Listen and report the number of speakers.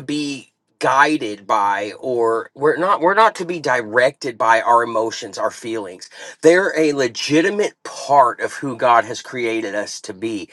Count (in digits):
1